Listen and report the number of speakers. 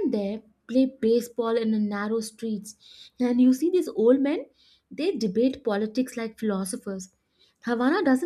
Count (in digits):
1